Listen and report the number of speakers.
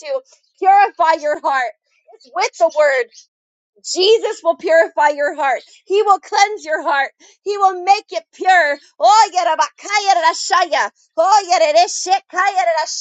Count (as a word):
one